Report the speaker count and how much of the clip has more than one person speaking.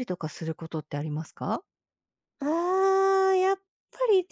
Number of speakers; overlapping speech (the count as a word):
two, no overlap